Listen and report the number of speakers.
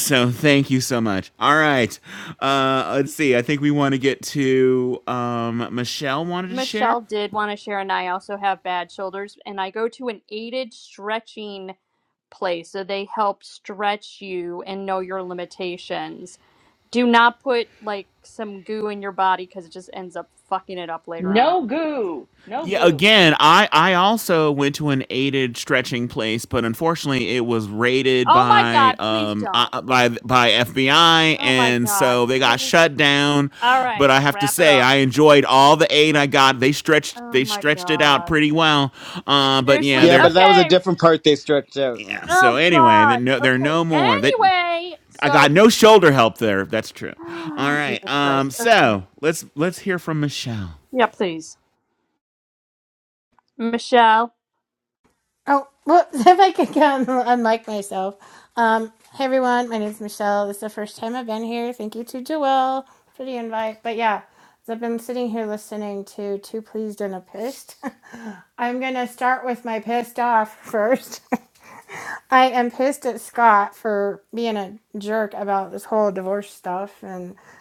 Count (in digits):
5